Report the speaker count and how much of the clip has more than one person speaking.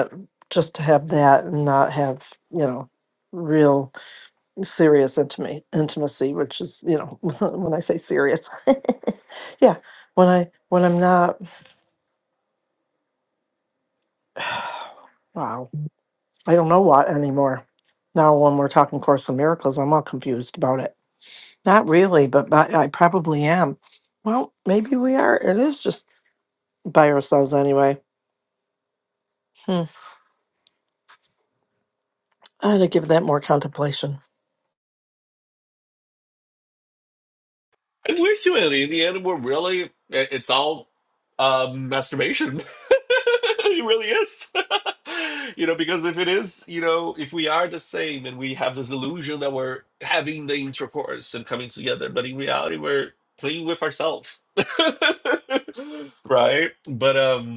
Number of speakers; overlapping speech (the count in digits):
2, no overlap